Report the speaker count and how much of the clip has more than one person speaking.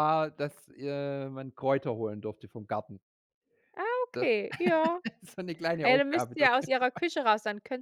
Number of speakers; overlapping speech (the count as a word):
two, about 12%